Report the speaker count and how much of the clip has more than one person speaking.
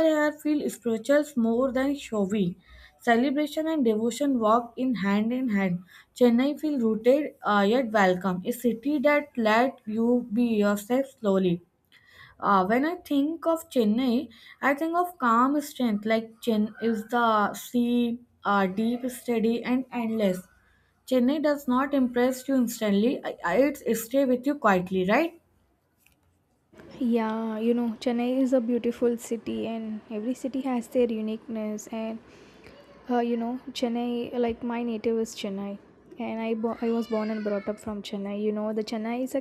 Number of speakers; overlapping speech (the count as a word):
two, no overlap